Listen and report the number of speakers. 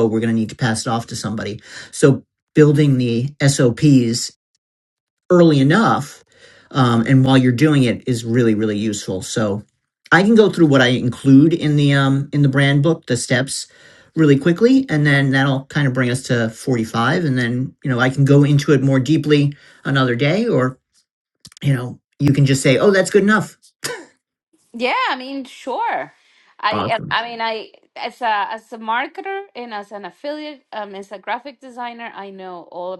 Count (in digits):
2